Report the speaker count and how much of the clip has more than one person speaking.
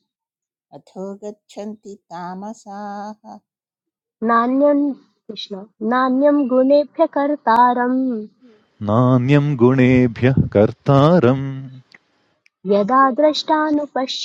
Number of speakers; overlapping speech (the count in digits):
3, no overlap